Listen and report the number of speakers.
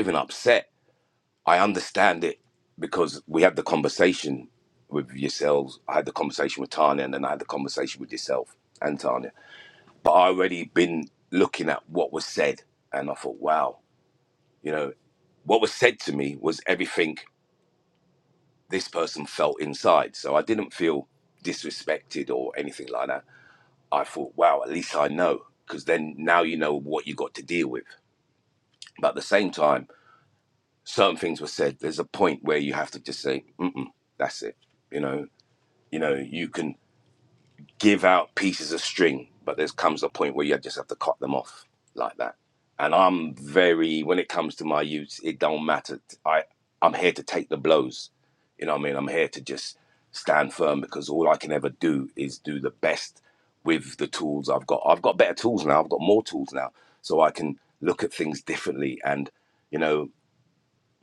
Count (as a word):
one